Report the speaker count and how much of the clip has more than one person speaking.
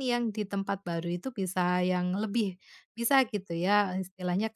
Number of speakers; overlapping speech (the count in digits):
1, no overlap